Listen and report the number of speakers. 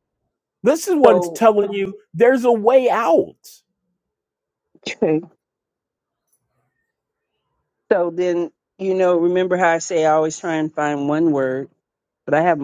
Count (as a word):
two